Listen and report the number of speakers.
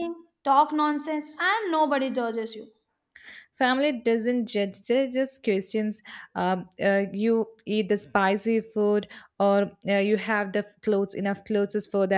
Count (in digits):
2